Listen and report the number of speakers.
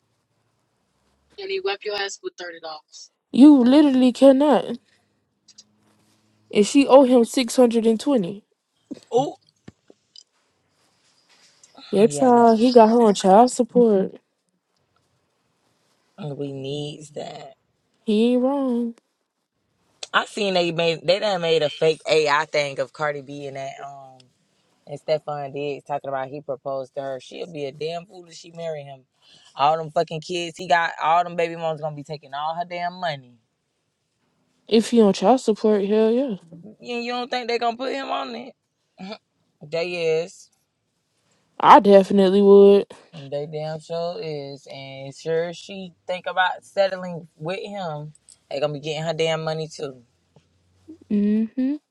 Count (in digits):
3